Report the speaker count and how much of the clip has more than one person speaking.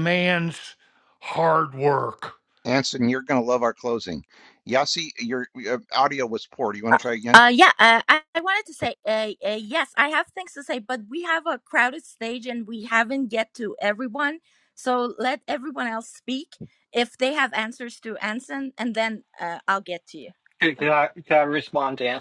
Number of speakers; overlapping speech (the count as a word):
four, about 1%